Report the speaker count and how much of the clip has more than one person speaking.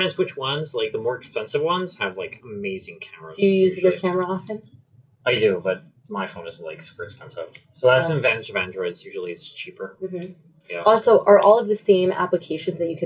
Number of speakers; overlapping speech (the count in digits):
2, about 7%